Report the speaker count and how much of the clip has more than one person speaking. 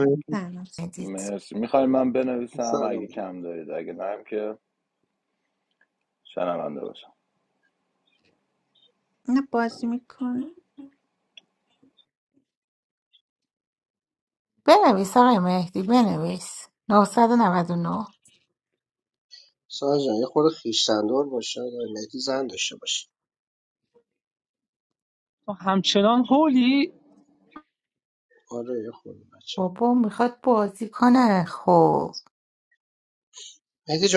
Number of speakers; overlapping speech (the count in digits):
5, about 2%